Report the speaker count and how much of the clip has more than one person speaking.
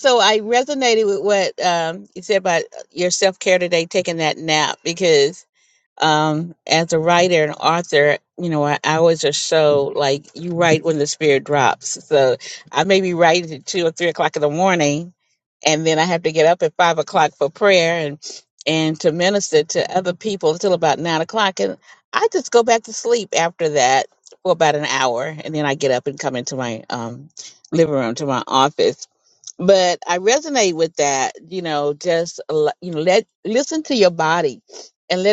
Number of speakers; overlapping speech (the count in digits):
1, no overlap